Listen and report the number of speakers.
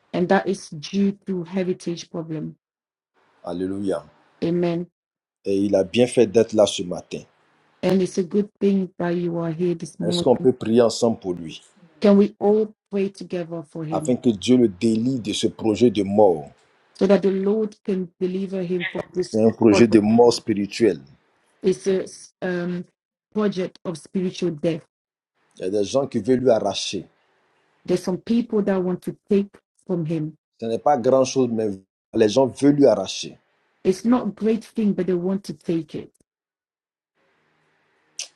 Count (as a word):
two